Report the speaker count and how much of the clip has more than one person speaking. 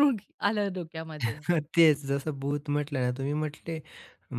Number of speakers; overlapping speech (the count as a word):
two, no overlap